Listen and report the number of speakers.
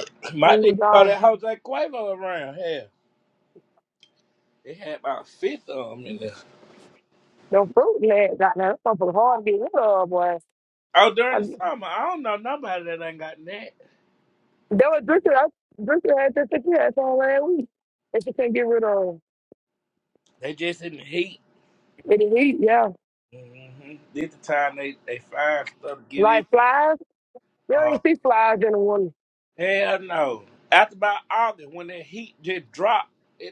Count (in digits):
2